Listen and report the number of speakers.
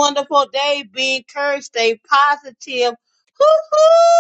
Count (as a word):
one